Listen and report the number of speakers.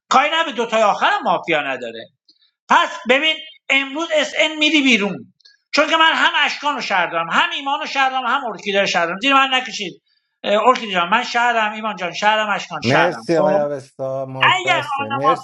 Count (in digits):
2